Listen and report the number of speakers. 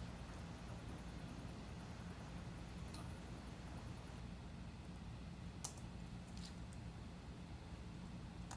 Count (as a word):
zero